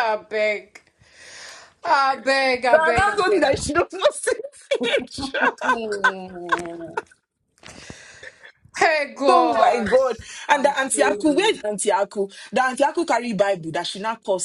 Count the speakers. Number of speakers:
two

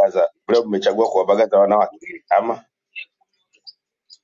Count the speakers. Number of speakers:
one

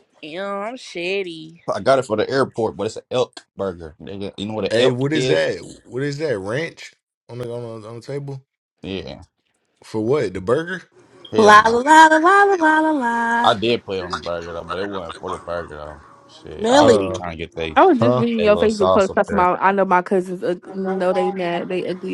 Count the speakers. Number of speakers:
five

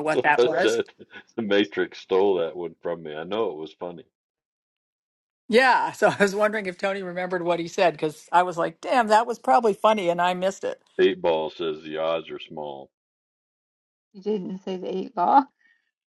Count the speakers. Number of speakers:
three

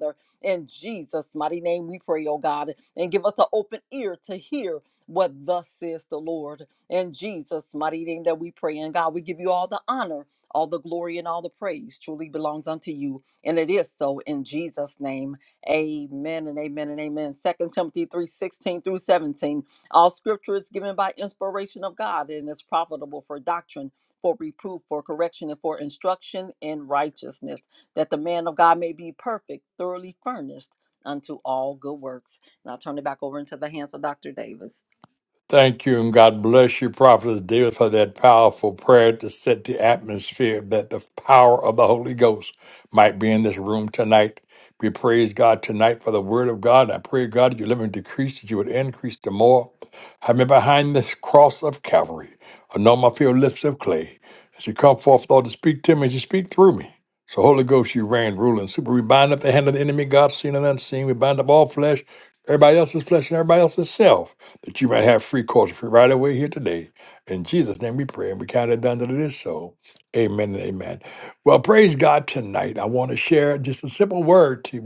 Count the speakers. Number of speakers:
two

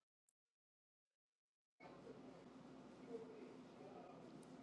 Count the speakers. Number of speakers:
zero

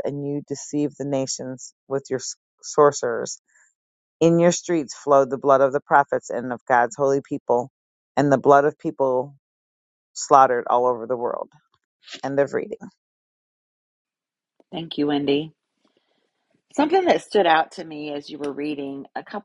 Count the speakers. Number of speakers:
two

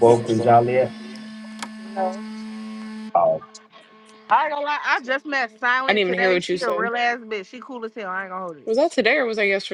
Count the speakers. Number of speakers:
three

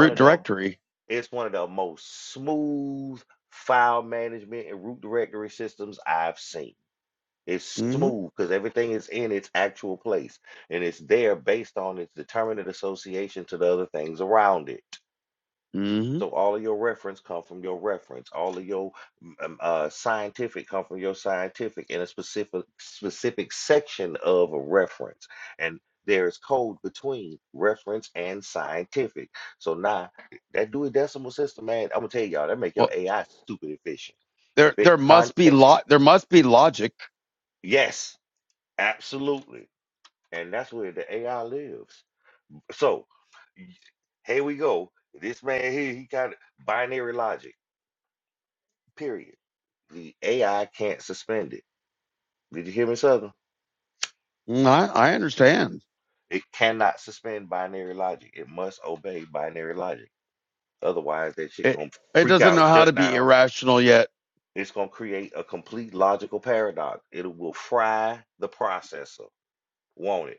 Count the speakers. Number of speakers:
two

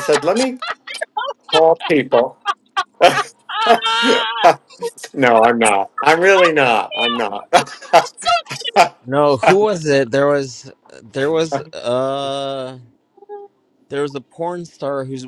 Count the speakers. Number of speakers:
three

